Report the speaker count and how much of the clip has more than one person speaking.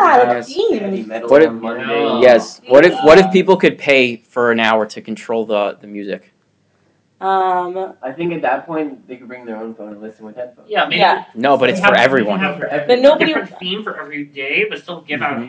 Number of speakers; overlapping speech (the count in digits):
4, about 40%